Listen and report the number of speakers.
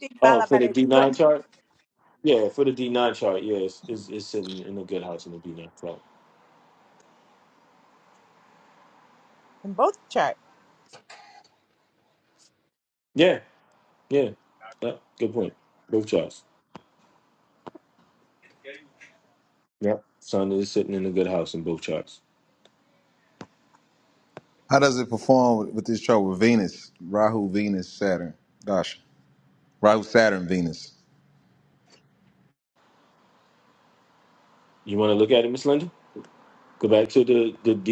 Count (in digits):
3